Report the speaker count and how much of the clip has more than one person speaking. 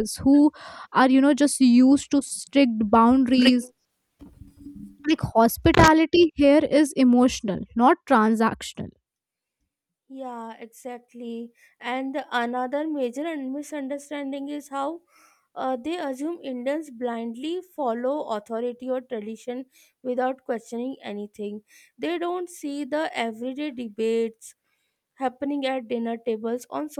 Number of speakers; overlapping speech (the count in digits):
2, no overlap